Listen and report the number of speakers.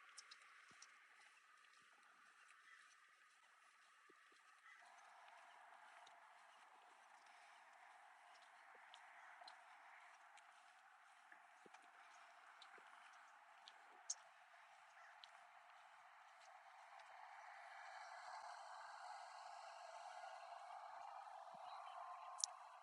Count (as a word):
zero